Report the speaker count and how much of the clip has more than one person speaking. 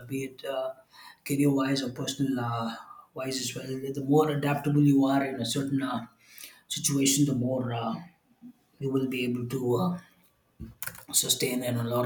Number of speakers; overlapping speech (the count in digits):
1, no overlap